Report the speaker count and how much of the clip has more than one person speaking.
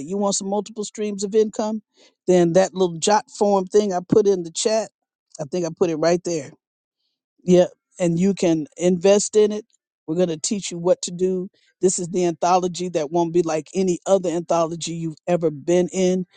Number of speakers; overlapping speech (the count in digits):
1, no overlap